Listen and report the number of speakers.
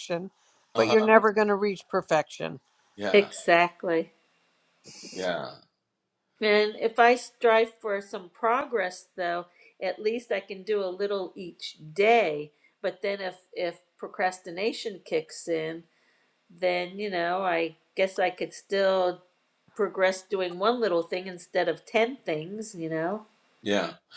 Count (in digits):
3